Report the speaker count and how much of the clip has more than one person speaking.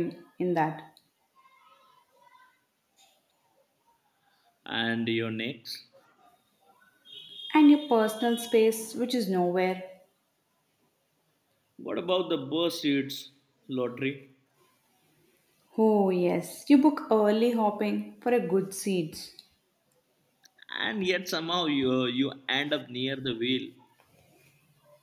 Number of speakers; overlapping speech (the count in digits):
2, no overlap